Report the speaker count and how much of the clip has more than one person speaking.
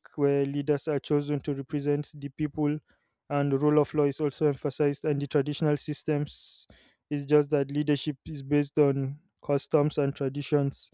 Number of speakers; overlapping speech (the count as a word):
one, no overlap